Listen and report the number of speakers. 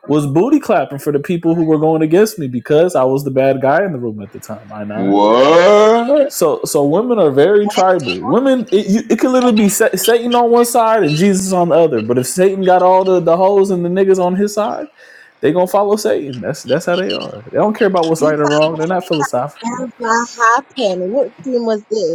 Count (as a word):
three